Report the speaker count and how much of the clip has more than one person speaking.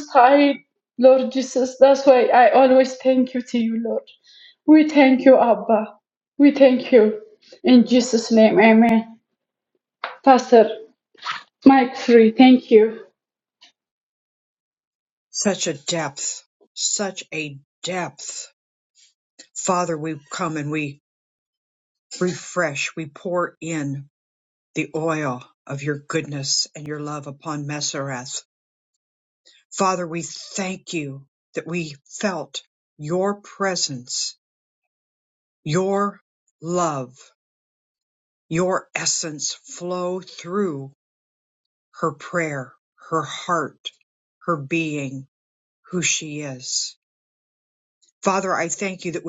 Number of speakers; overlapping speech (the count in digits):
2, no overlap